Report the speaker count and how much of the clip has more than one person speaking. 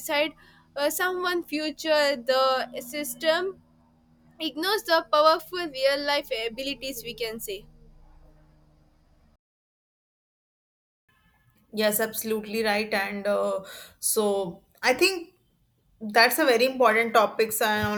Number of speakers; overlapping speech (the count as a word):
two, no overlap